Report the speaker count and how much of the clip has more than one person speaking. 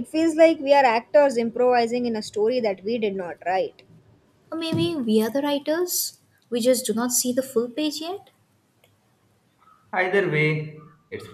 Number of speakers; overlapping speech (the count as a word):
three, no overlap